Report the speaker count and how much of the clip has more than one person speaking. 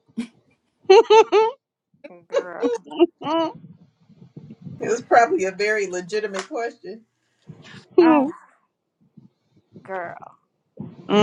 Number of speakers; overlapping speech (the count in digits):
3, about 3%